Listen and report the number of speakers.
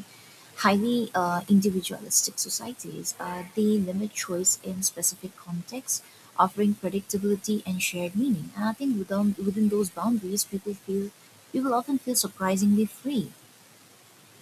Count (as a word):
one